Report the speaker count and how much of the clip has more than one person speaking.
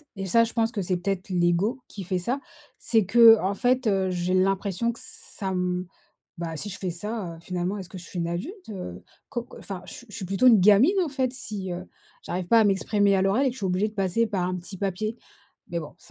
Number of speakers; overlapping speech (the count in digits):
1, no overlap